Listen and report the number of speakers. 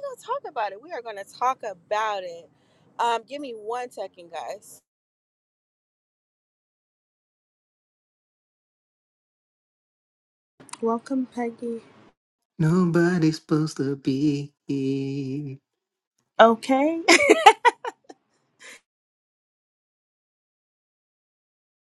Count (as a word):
three